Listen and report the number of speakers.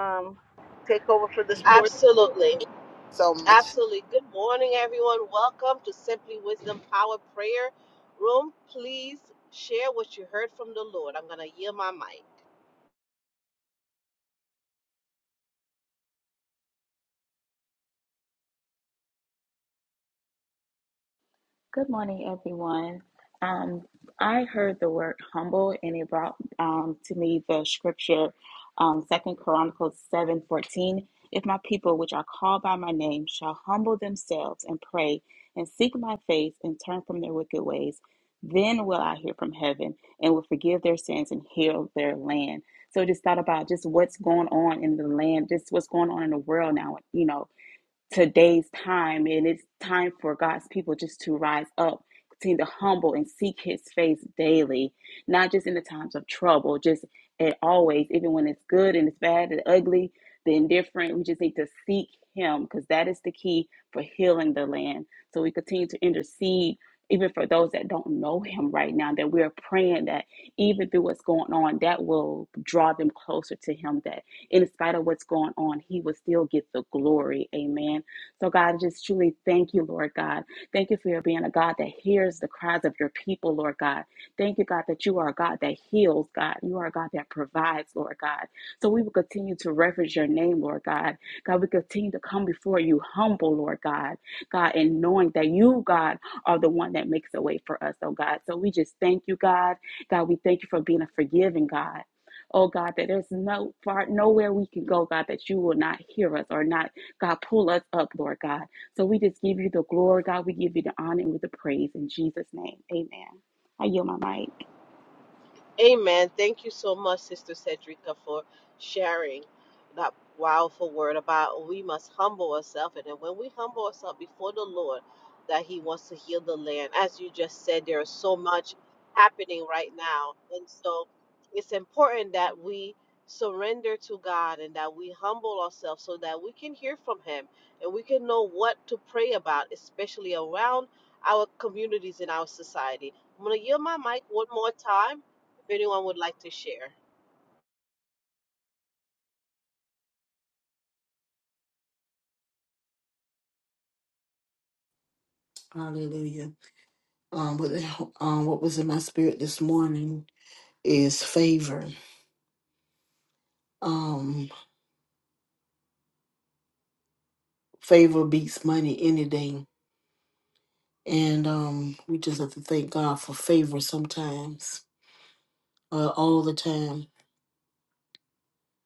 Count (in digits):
4